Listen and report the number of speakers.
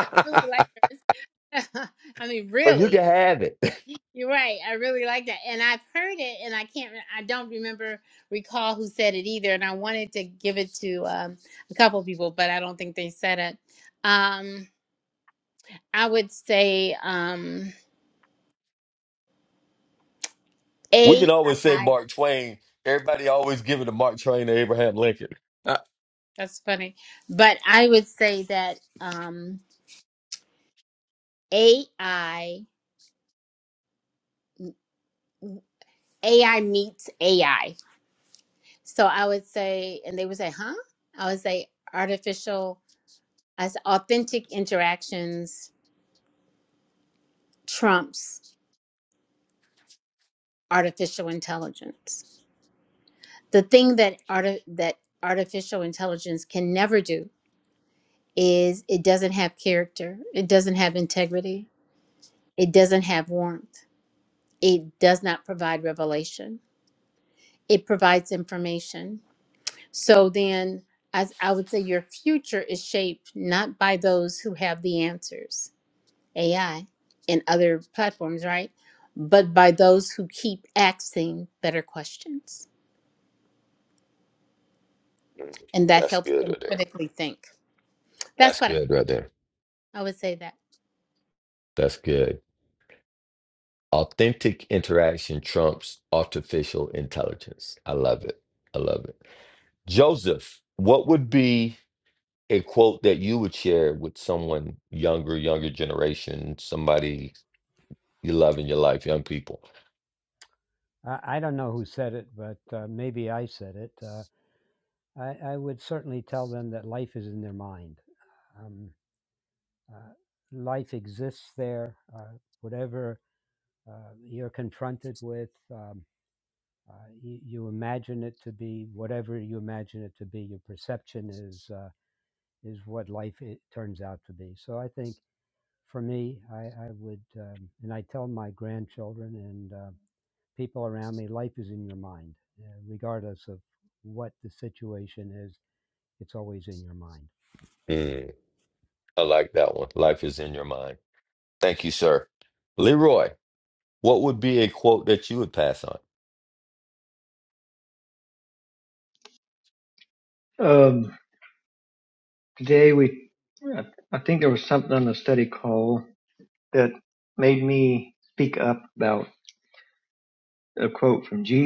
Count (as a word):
four